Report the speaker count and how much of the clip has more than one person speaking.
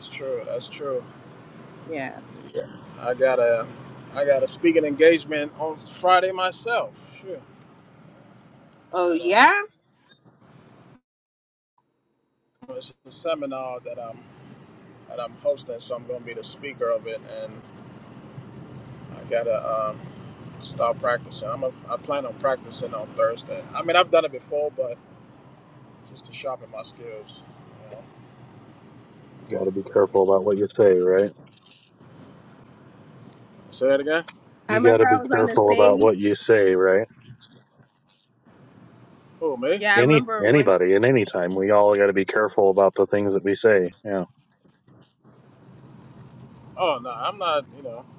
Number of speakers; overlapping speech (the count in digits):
3, about 5%